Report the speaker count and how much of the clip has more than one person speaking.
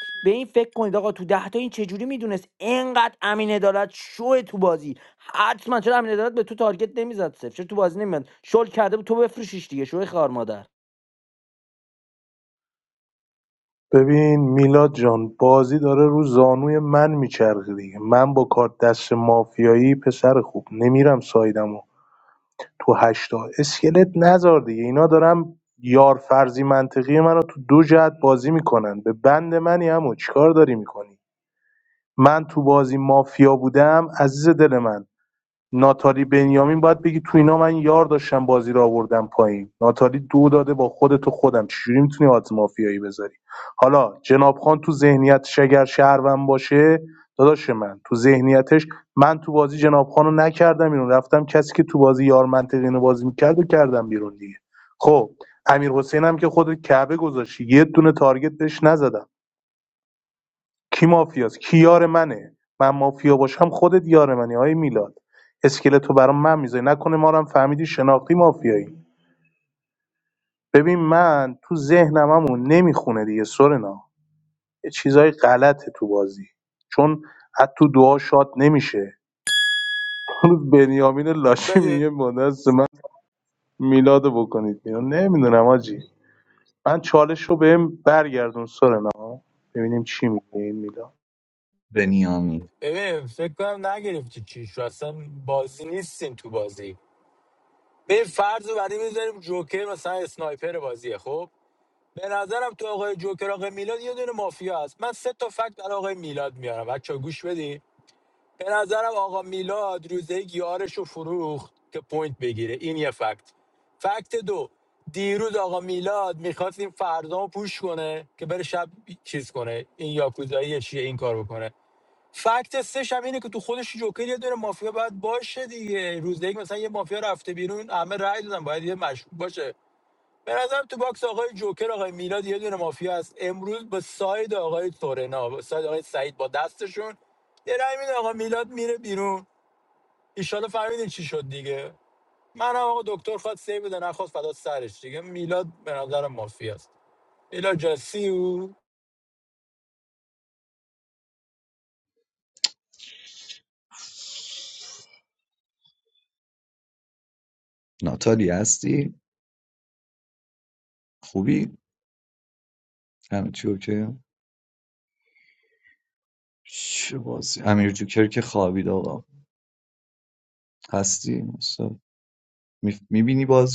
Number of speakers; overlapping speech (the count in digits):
4, under 1%